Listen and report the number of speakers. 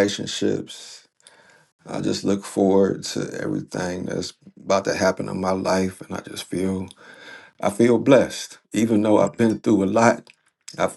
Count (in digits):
1